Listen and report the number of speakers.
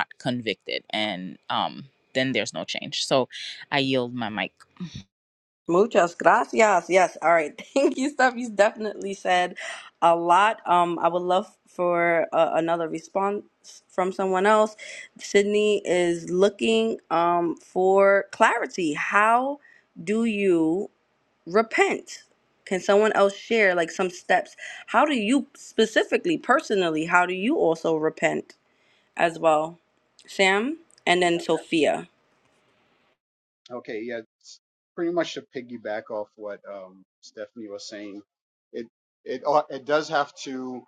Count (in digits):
3